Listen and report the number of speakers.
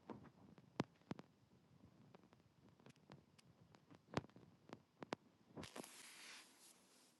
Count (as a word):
zero